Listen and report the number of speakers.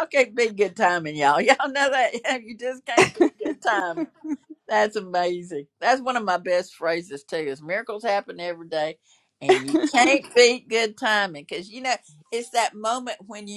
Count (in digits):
1